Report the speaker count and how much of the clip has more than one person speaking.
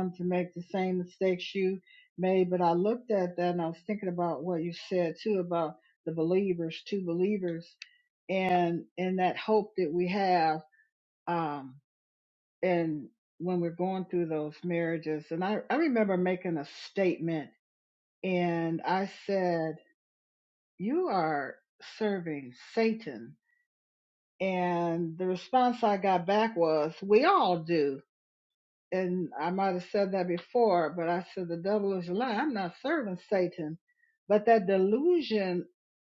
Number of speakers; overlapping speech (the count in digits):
1, no overlap